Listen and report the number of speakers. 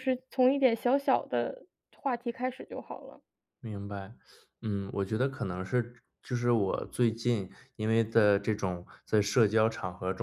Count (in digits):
2